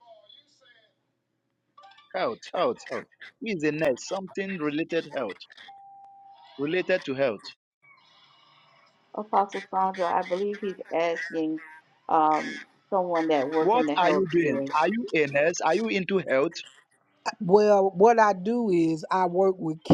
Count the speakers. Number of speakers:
3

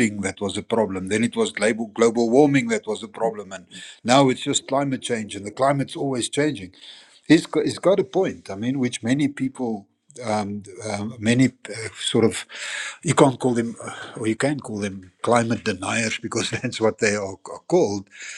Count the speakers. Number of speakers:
1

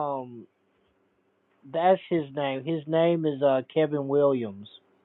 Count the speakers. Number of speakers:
1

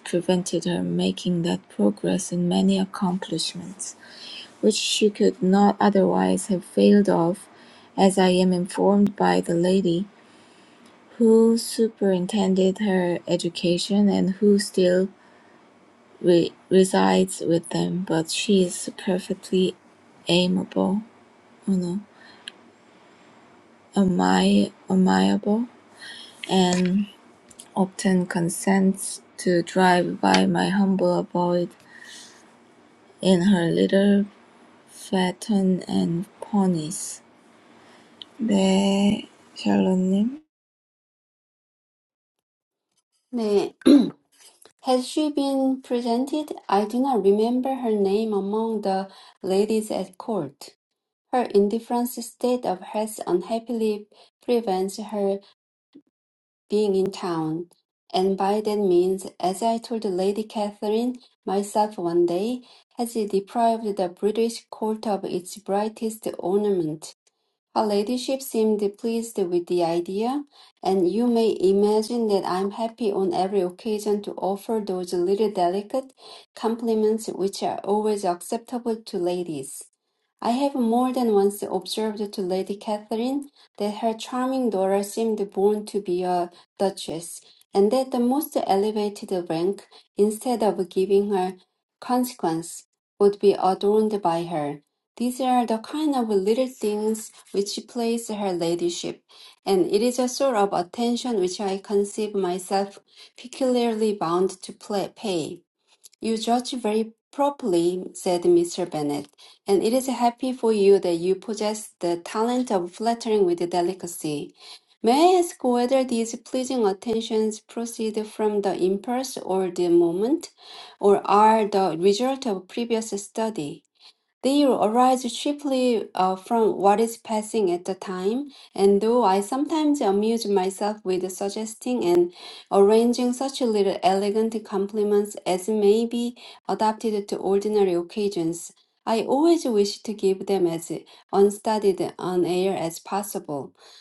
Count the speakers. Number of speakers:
2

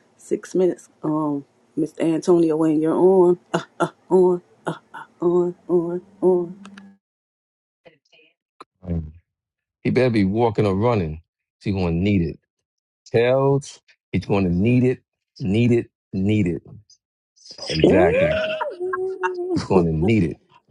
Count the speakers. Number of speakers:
3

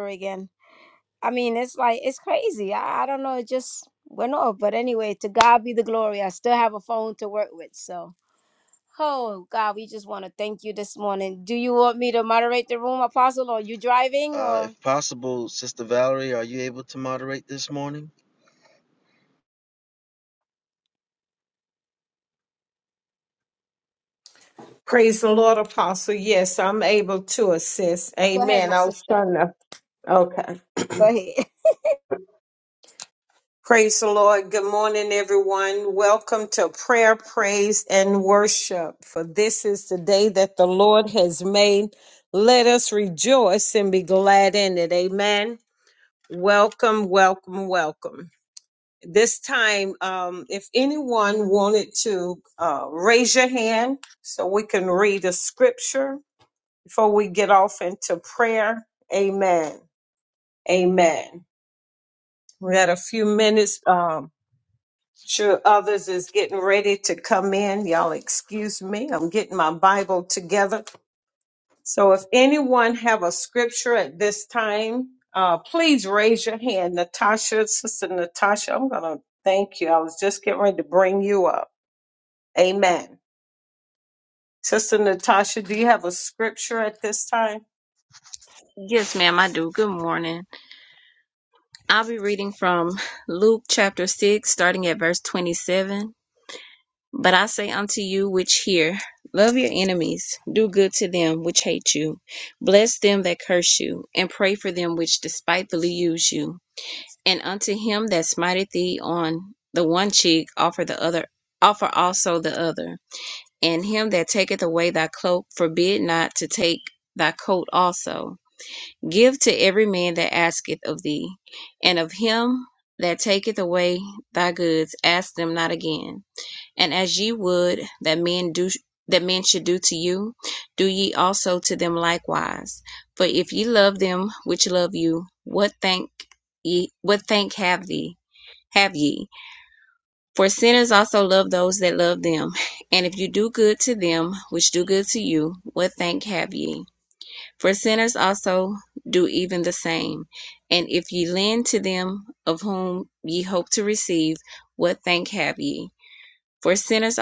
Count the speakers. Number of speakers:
4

